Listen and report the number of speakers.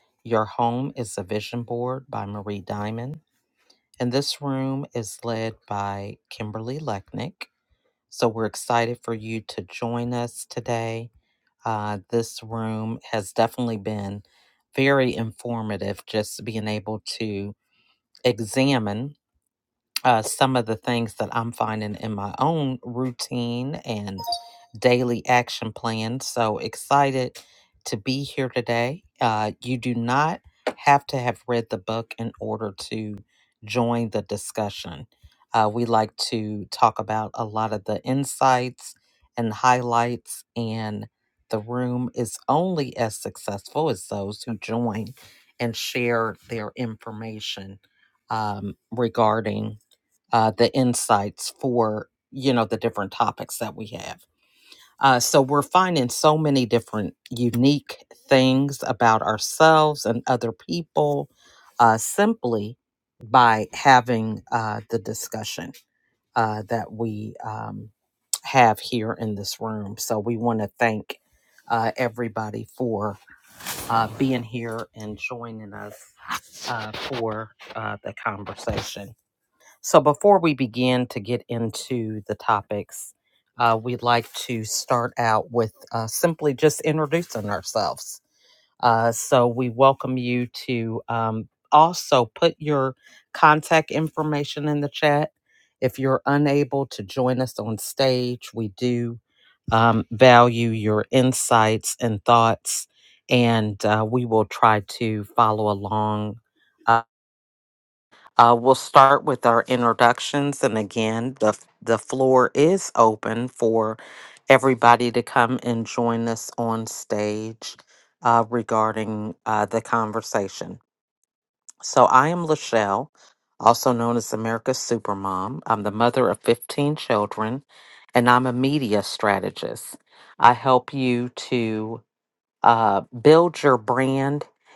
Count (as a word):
one